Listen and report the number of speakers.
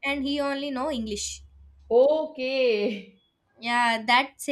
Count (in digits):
2